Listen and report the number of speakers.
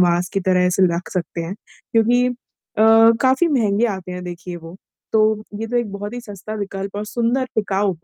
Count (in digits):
1